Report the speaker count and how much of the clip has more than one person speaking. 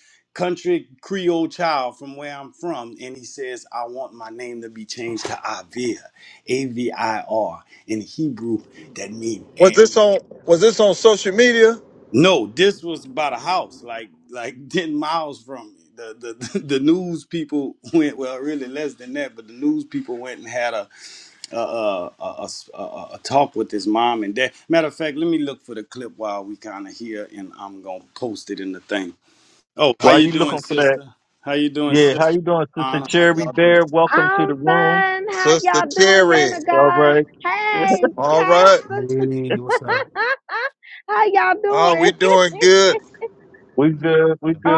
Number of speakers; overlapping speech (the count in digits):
5, about 15%